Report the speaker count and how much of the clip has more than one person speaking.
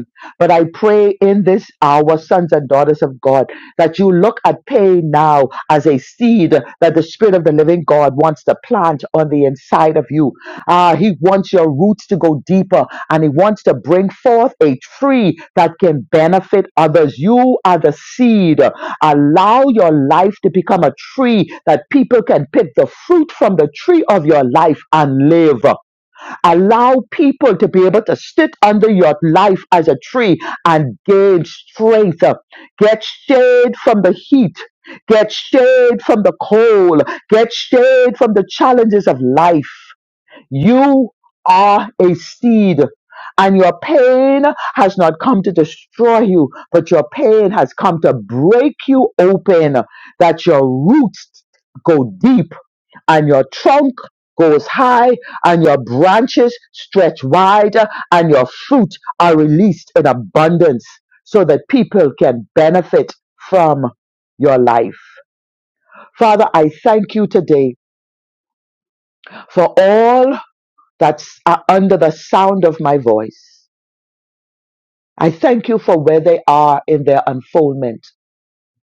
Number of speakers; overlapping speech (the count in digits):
1, no overlap